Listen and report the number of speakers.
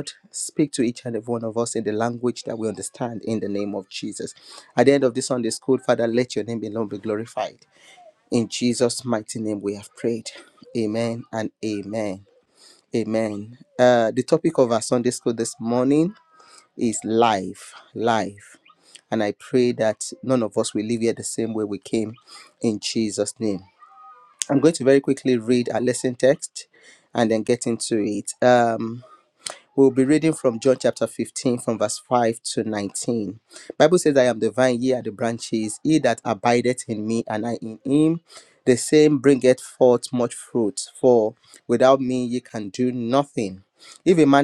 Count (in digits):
1